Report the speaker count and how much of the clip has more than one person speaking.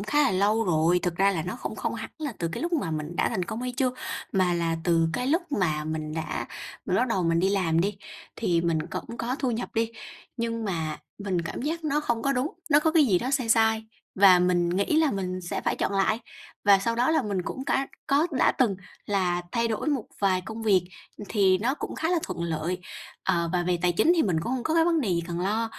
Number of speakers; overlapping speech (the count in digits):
1, no overlap